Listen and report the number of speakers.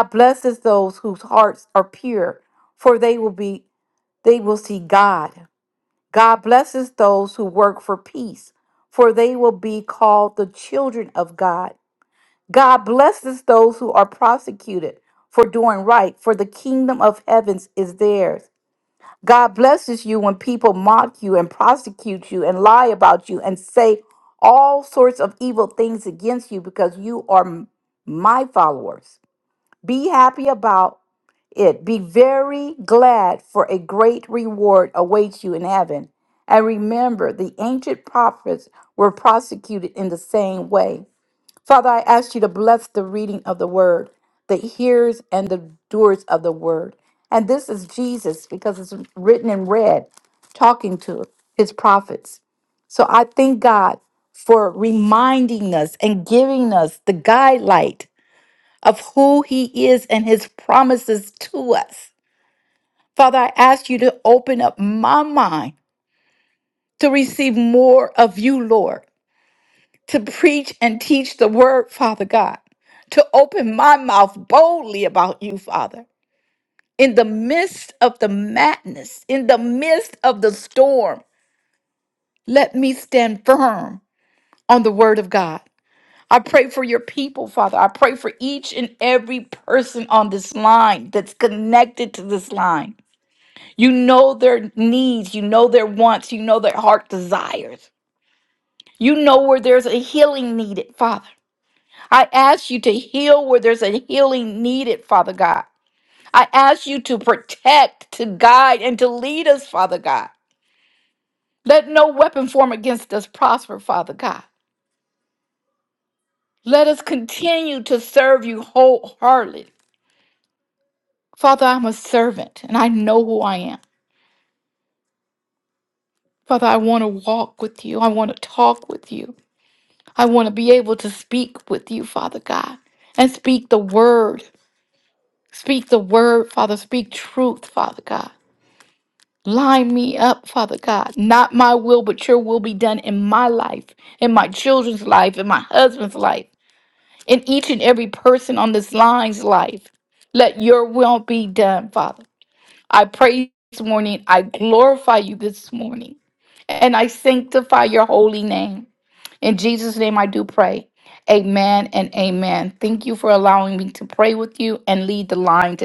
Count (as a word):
one